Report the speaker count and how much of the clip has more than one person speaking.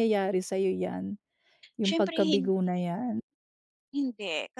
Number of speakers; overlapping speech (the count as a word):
two, about 15%